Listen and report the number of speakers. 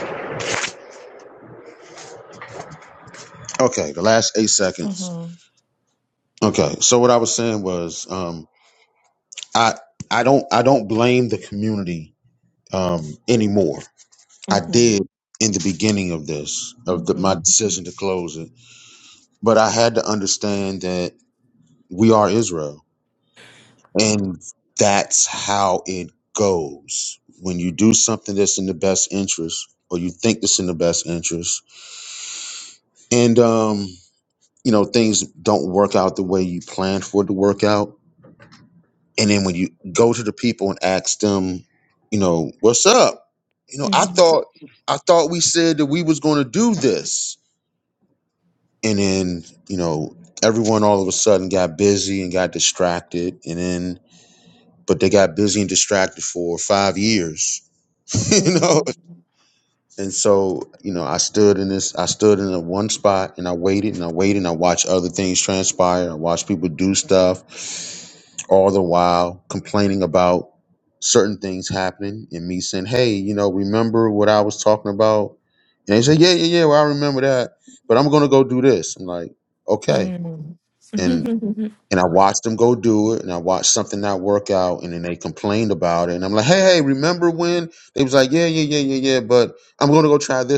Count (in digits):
2